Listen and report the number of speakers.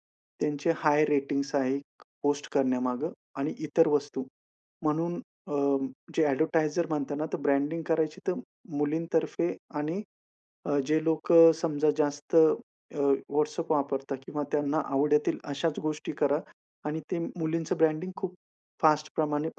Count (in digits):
1